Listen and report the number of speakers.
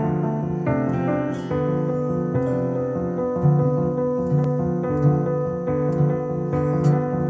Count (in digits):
0